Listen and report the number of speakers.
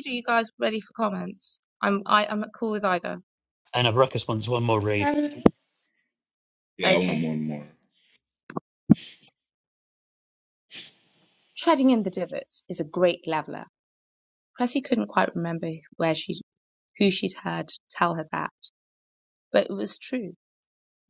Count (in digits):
3